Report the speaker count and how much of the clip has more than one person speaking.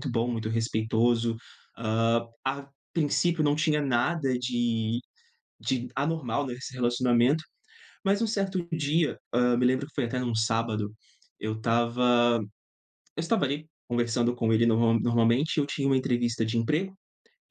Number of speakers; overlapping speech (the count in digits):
1, no overlap